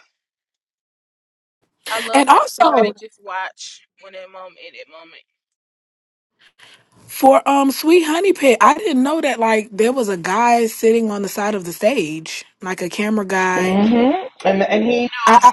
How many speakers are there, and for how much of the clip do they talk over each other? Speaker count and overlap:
three, about 9%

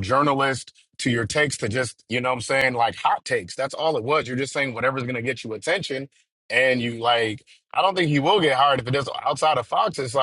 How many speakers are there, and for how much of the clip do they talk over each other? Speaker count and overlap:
one, no overlap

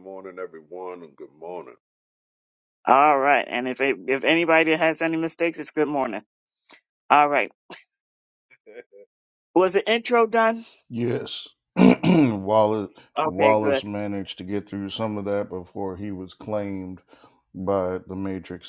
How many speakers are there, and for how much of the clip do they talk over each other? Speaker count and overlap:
three, about 3%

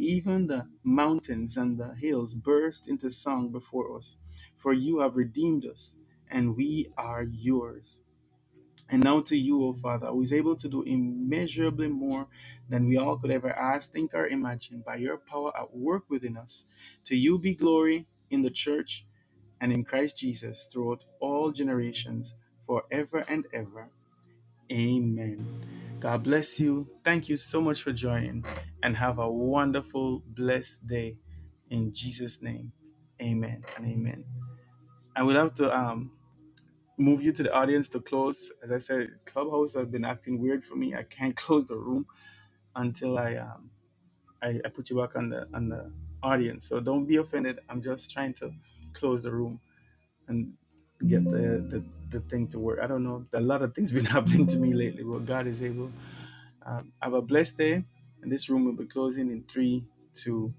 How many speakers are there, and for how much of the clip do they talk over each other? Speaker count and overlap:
one, no overlap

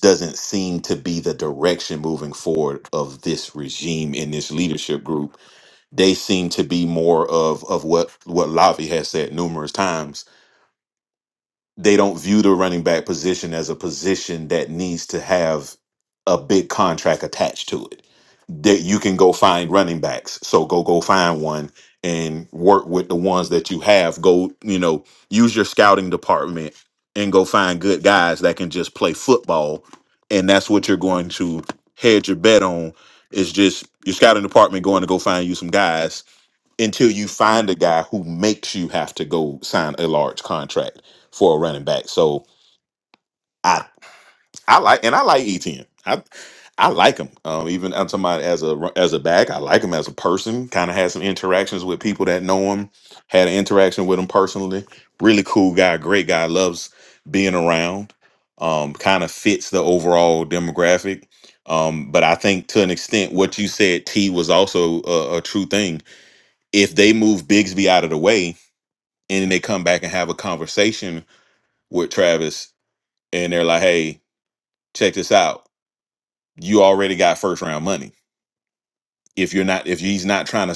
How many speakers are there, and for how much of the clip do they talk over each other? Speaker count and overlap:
one, no overlap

